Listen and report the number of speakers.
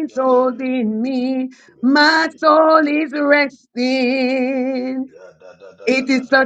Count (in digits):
2